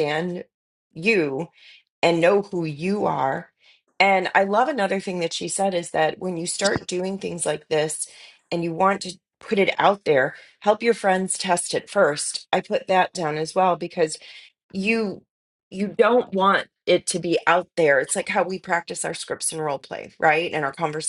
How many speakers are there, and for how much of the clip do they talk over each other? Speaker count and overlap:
1, no overlap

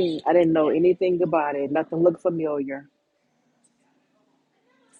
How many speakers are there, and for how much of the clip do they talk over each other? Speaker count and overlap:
1, no overlap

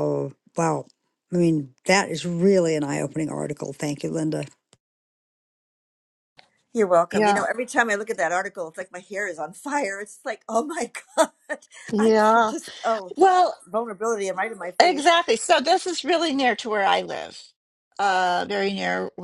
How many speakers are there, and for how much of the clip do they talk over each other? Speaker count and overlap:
3, about 6%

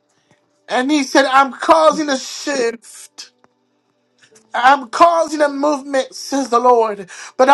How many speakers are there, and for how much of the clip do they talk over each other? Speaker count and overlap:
1, no overlap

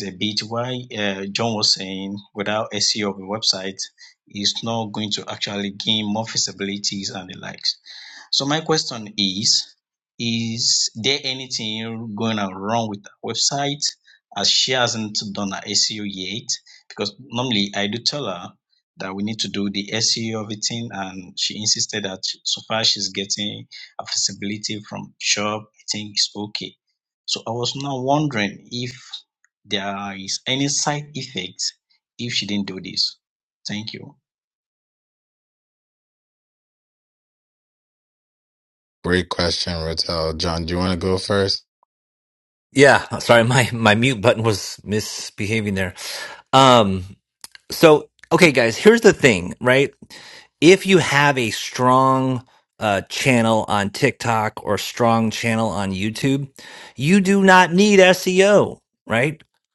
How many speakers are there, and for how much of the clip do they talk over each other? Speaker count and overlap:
3, no overlap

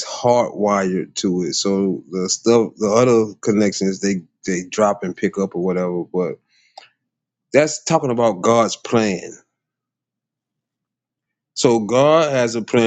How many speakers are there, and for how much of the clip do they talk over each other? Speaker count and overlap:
1, no overlap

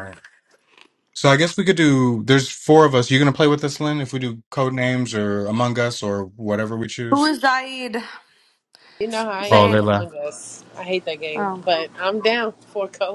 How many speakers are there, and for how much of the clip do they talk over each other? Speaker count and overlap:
3, about 8%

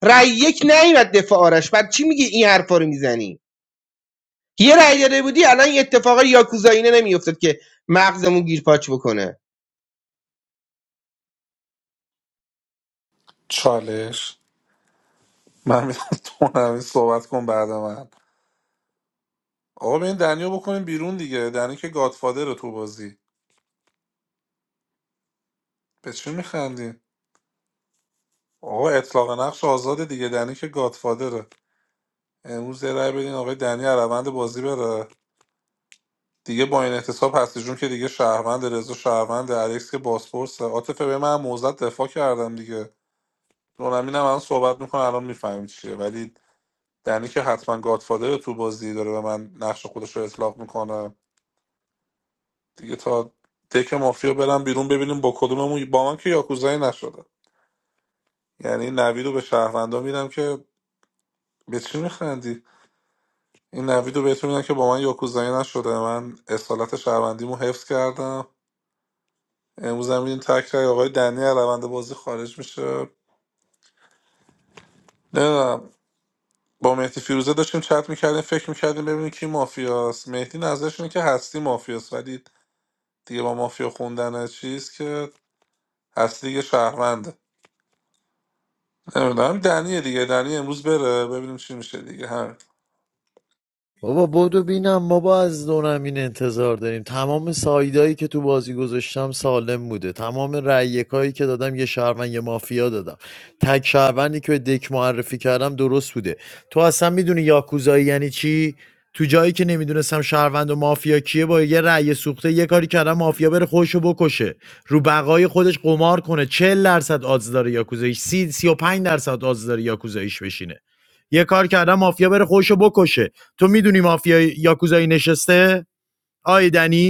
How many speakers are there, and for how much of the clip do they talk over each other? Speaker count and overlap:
3, no overlap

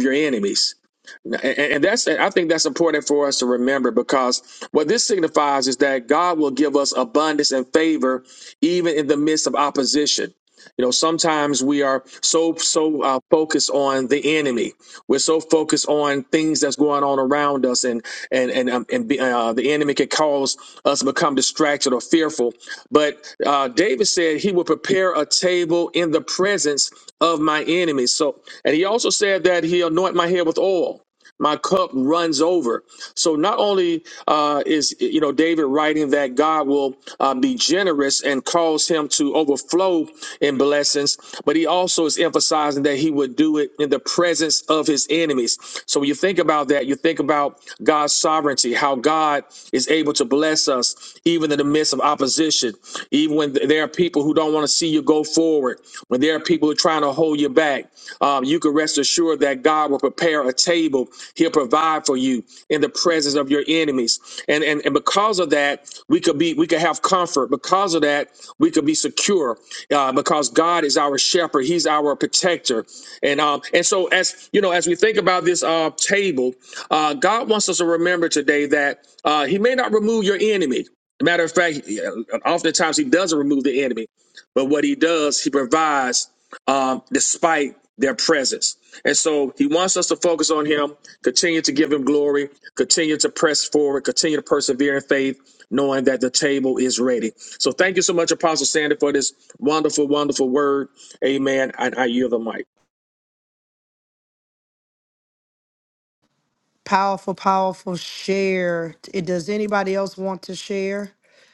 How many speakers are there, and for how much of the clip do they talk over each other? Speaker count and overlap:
2, no overlap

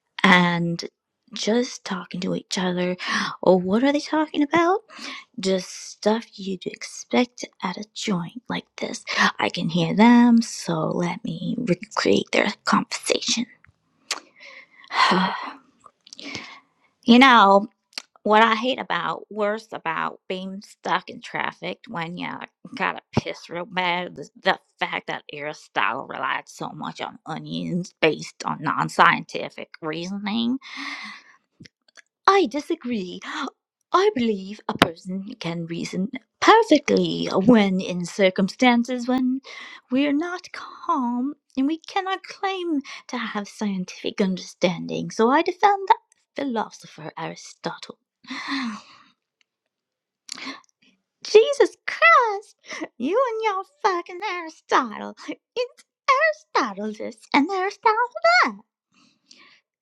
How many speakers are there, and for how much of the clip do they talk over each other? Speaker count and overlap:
1, no overlap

